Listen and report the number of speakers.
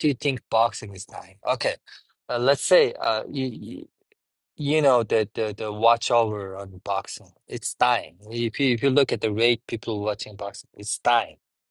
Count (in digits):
1